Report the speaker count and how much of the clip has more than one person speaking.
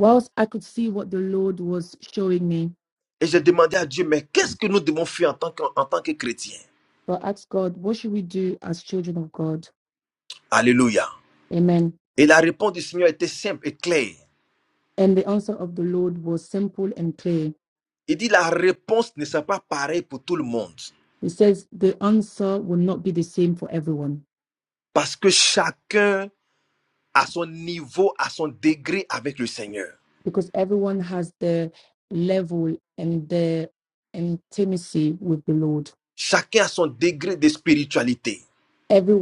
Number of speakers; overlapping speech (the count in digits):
2, no overlap